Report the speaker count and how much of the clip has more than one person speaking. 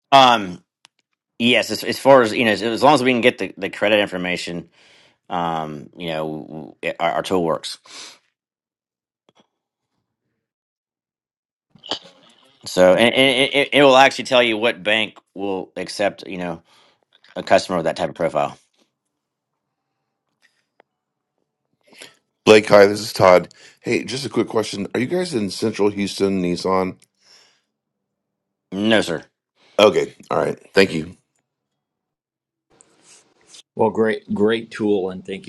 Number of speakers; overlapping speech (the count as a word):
three, no overlap